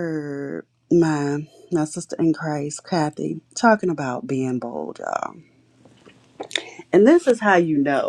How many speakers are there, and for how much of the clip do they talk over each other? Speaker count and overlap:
one, no overlap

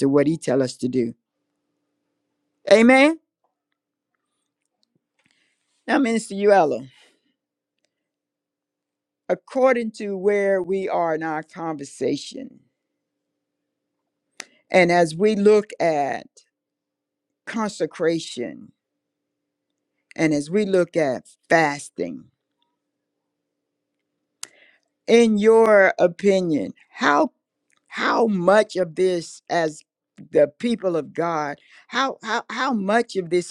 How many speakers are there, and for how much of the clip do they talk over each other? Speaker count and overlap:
one, no overlap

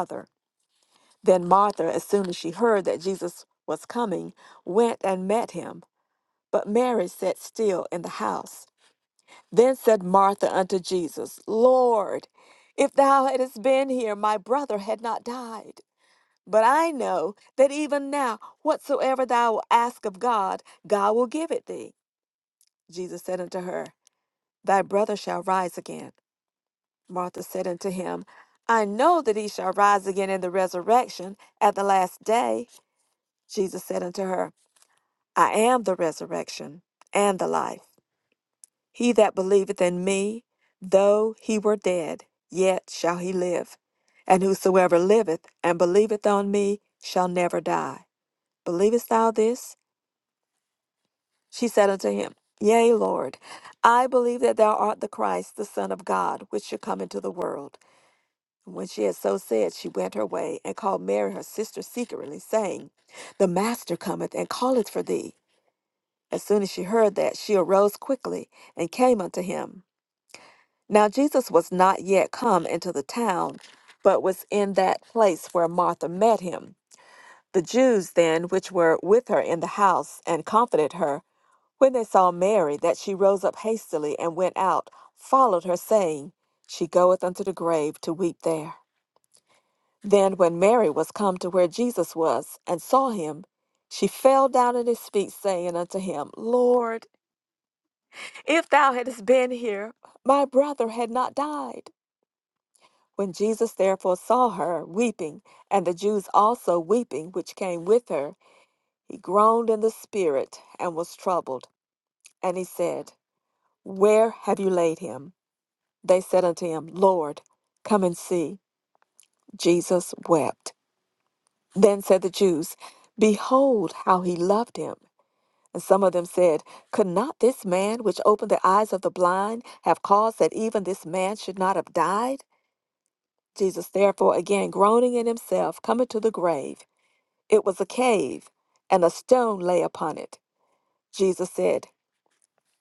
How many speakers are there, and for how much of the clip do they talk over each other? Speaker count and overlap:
one, no overlap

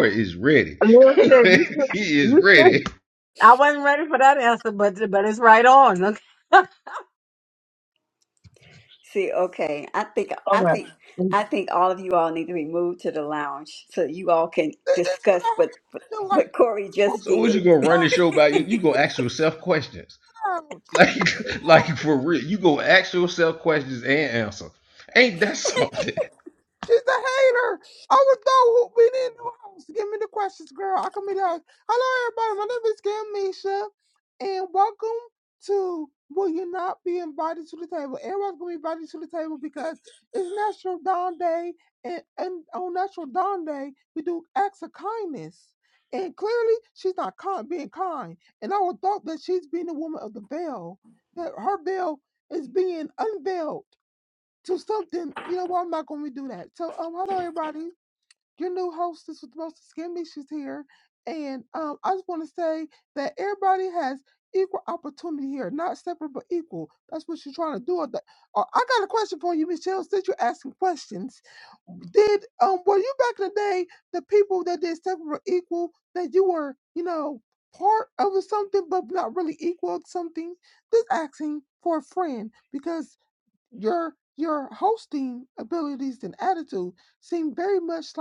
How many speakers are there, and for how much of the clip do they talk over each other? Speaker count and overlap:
four, about 4%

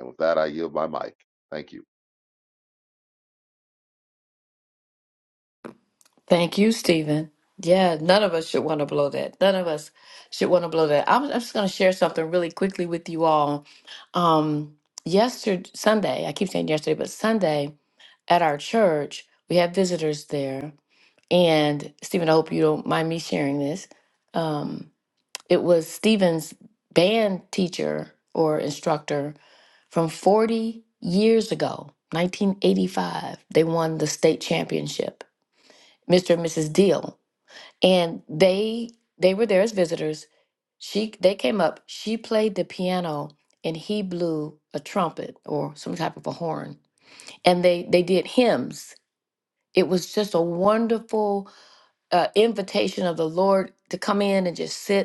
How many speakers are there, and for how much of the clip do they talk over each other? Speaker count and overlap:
two, no overlap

